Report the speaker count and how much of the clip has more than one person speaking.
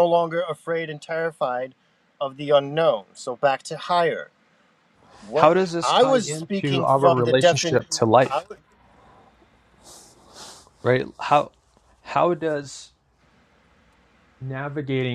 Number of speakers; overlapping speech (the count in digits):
2, about 15%